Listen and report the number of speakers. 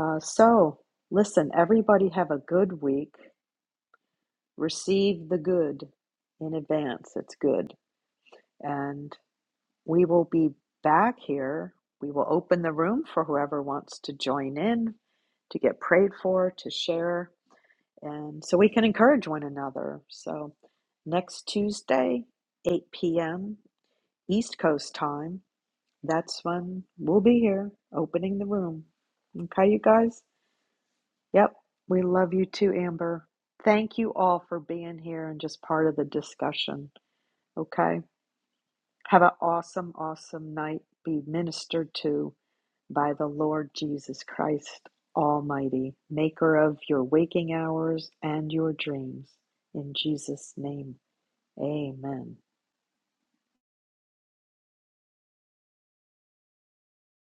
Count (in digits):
1